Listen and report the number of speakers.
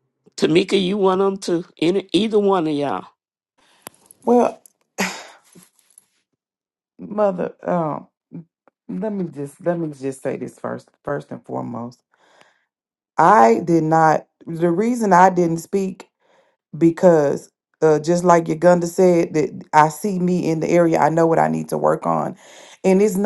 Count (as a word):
two